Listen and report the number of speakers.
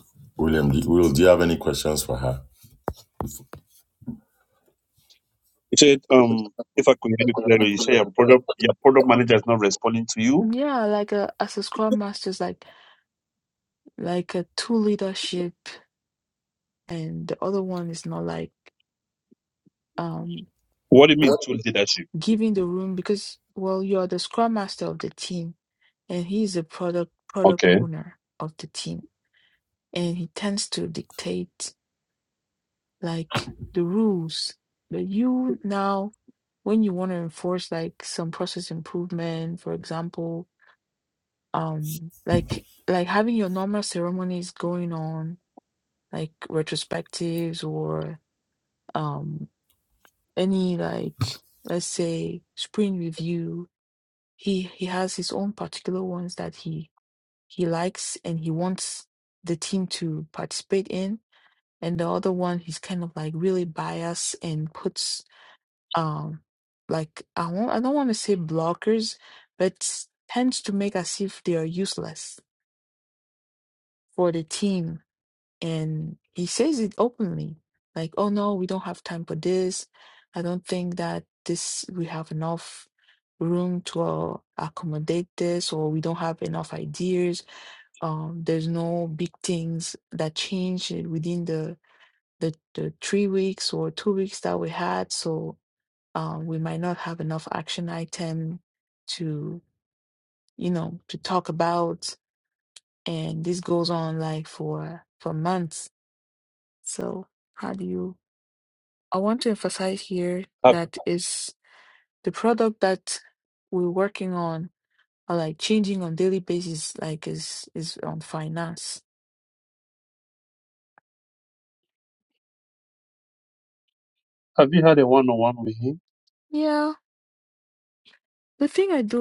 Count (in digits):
3